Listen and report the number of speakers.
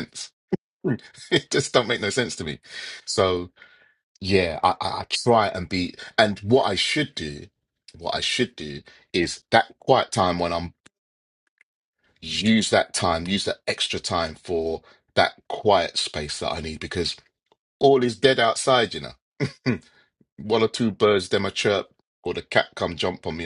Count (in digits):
1